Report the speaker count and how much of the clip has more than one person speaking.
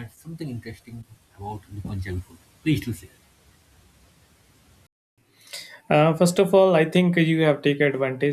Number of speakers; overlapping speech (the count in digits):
2, no overlap